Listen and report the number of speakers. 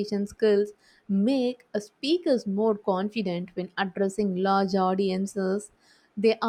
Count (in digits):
1